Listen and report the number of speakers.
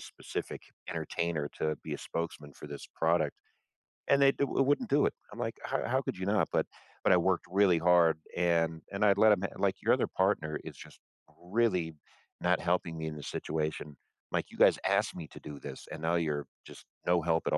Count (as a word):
one